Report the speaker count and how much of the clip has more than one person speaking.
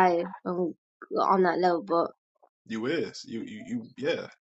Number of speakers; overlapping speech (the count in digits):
2, no overlap